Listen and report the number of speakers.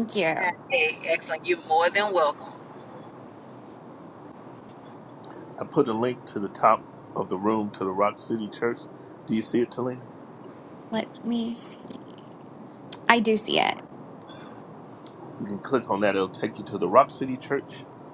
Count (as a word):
three